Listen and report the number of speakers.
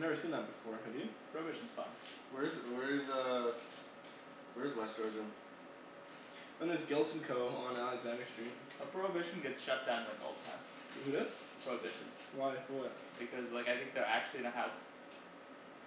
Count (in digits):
3